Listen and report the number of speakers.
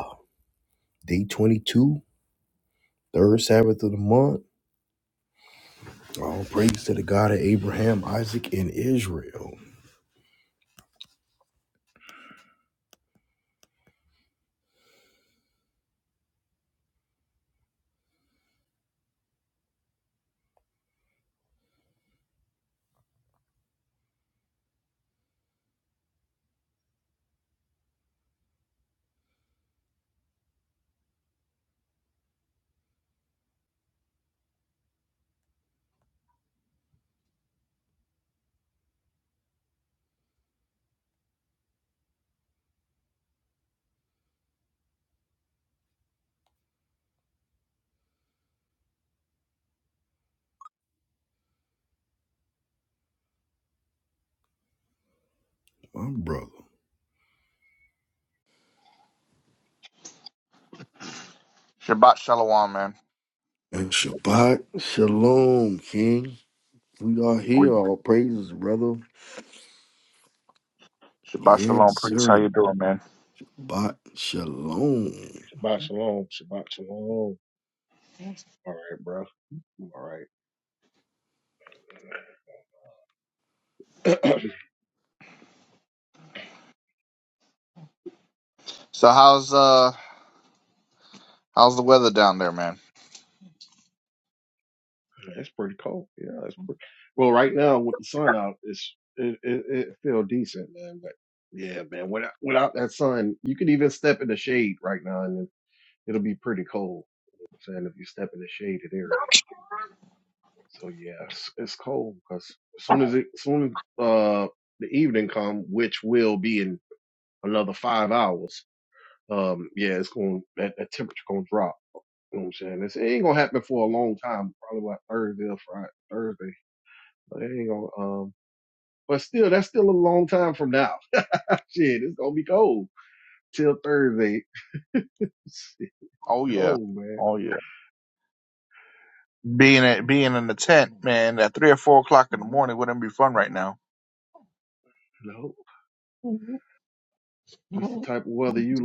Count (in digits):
3